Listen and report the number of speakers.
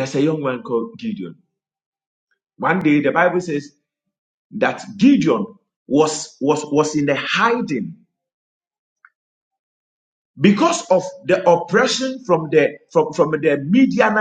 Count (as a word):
one